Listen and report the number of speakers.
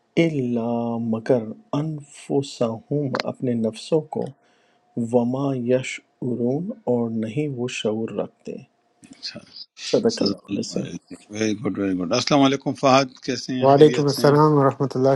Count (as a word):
three